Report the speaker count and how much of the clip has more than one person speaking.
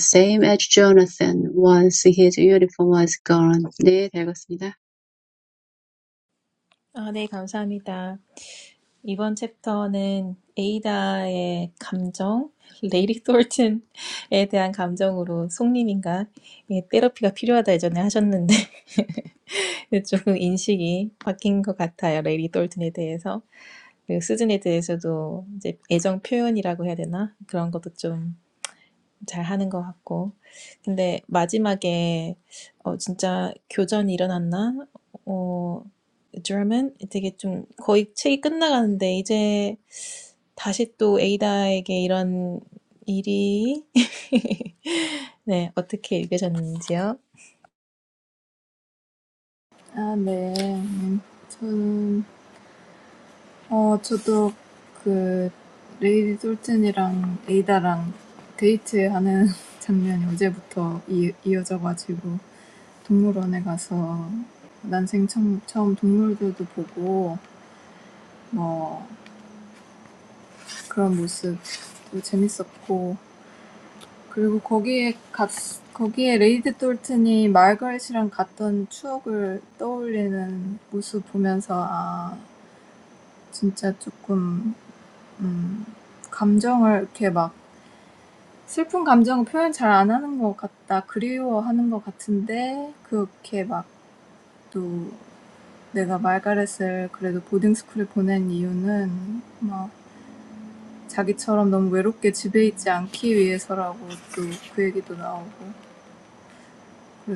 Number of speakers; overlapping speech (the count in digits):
3, no overlap